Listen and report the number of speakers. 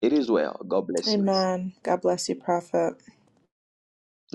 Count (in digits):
2